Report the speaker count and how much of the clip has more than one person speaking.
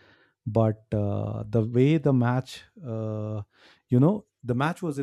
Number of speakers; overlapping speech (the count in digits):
1, no overlap